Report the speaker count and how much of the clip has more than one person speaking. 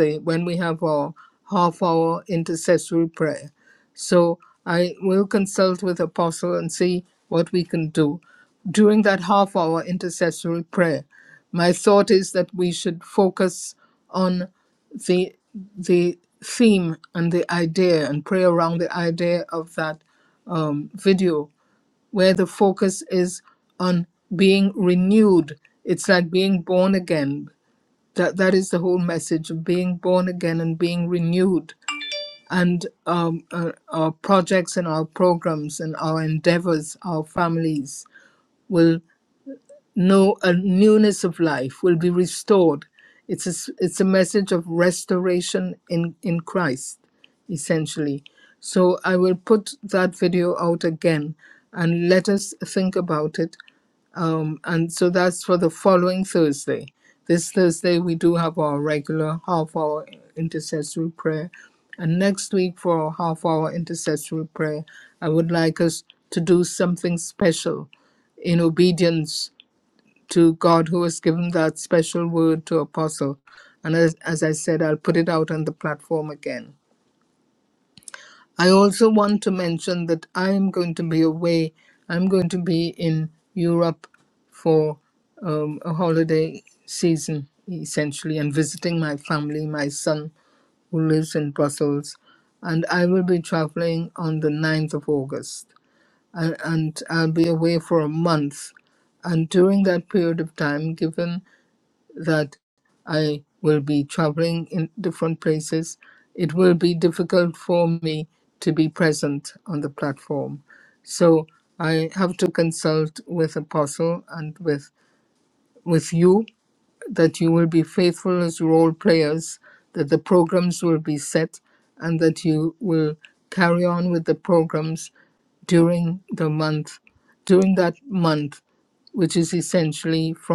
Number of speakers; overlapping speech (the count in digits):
1, no overlap